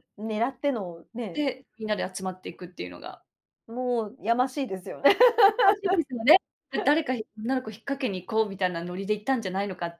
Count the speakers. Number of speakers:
2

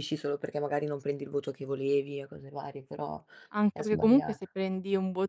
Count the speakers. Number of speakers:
2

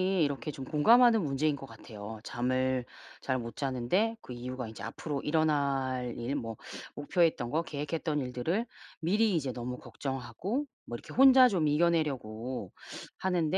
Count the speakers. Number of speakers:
1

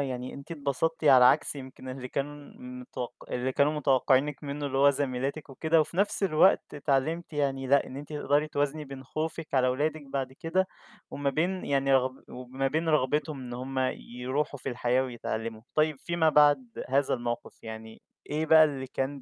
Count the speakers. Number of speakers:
1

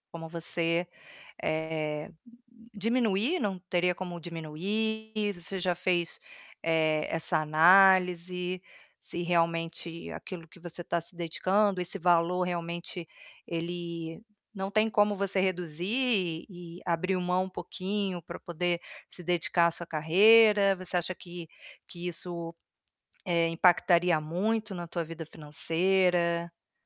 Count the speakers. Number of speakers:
1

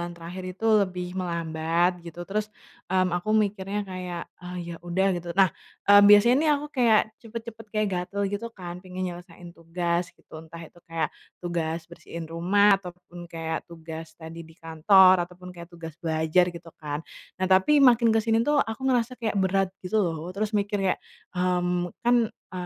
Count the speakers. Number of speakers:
1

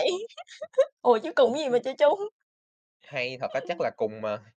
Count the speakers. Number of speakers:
2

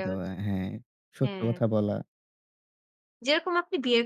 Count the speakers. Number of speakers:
2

